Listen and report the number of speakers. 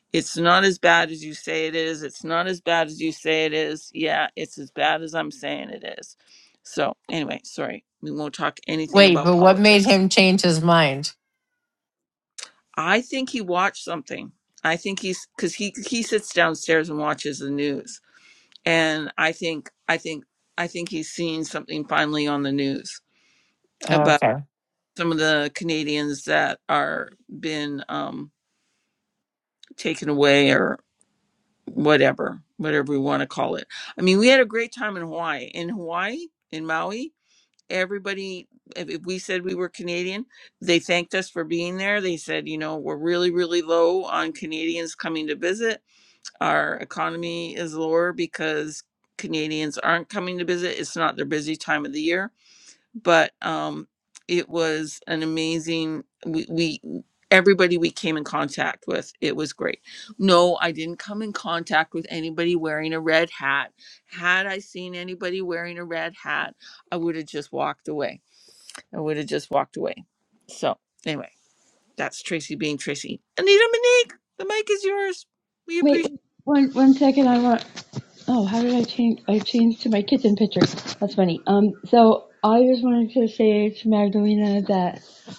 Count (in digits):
3